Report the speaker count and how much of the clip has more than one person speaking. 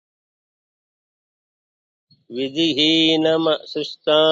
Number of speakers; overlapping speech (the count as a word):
one, no overlap